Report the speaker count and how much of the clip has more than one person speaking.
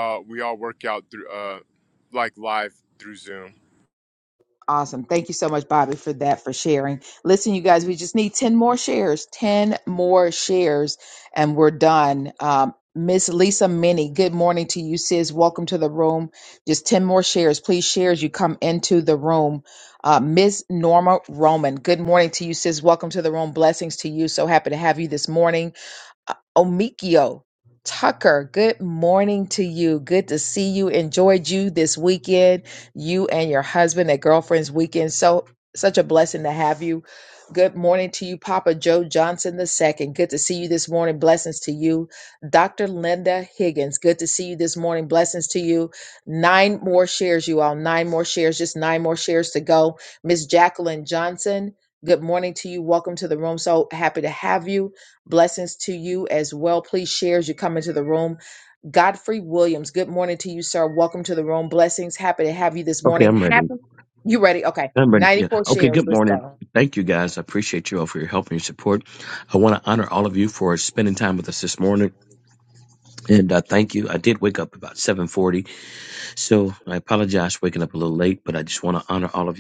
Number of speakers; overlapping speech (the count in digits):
3, about 3%